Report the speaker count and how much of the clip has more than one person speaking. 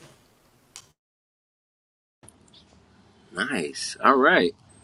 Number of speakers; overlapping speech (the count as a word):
one, no overlap